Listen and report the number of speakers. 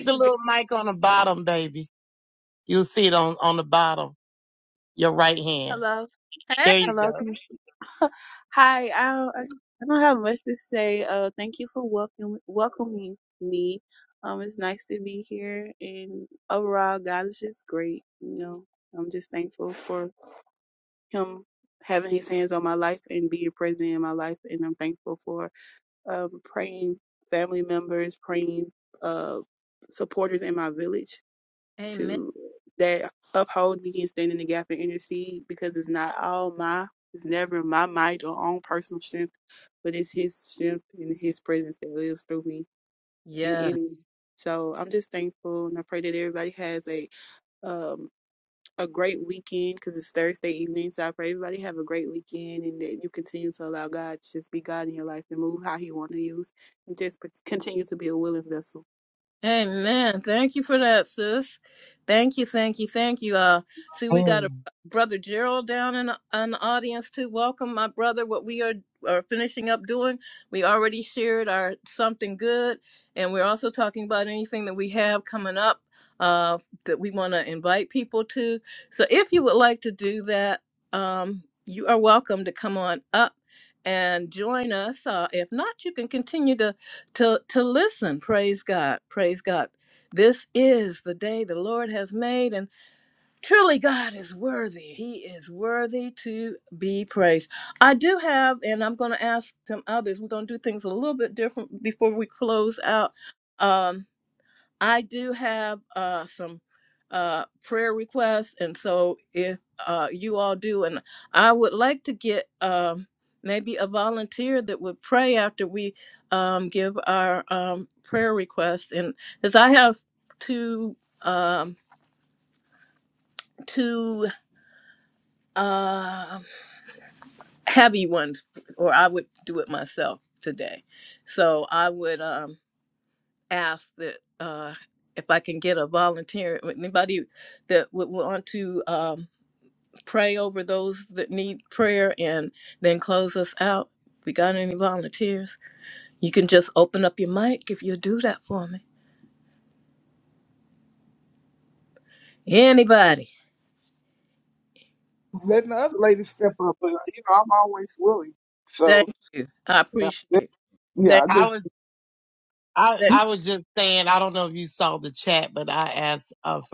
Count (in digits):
4